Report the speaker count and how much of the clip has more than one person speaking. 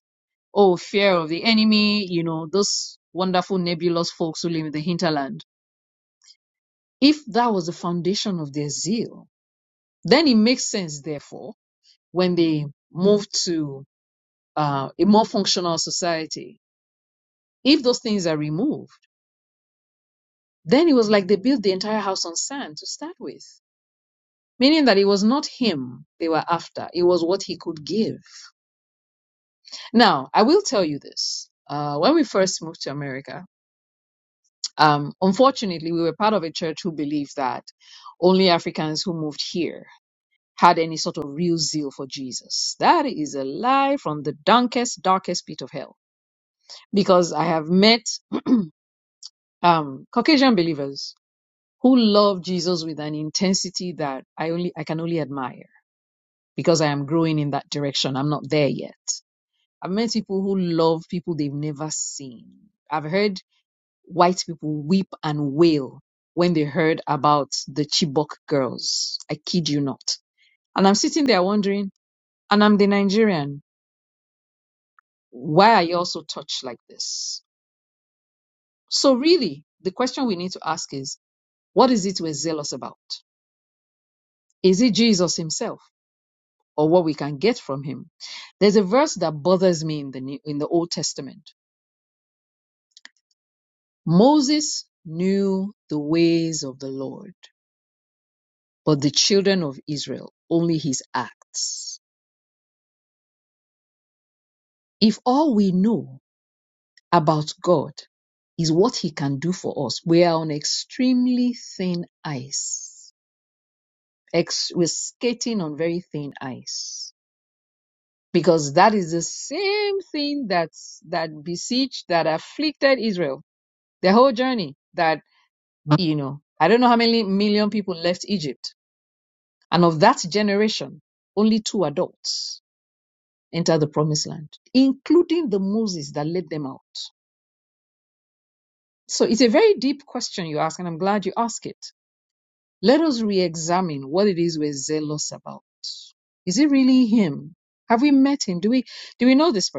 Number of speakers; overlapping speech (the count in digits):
1, no overlap